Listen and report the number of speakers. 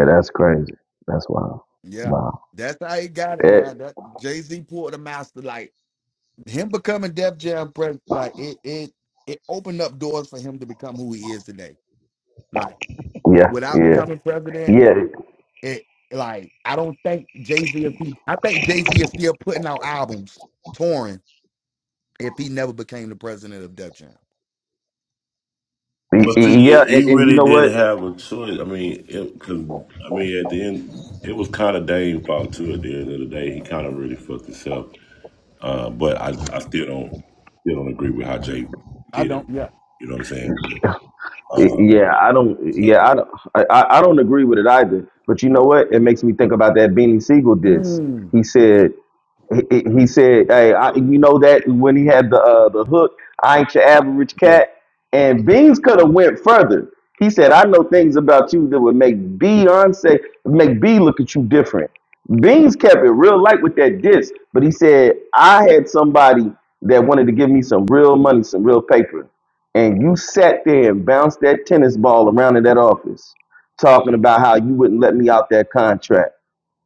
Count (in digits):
3